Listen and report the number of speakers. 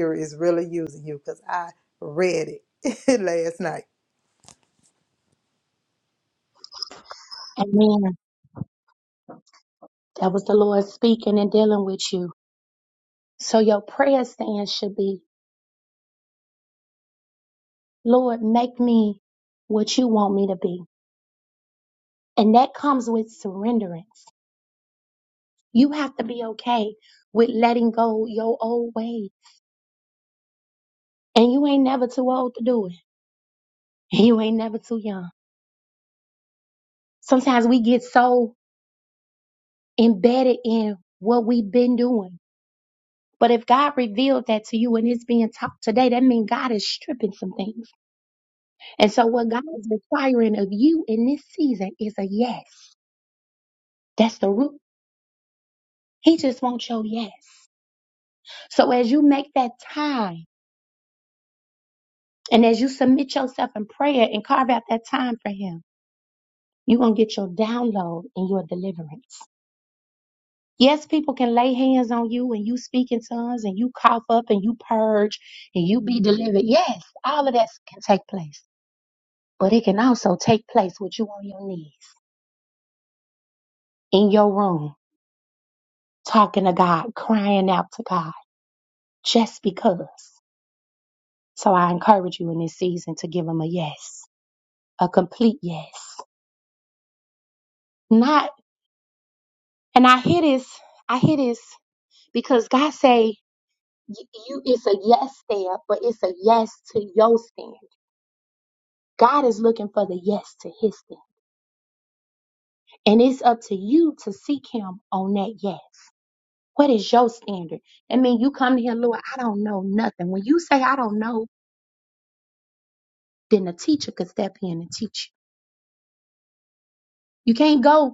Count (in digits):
2